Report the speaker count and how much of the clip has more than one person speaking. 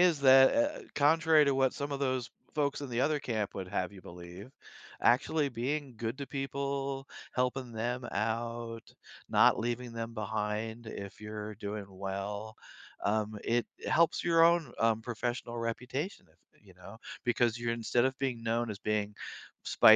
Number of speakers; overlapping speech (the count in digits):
1, no overlap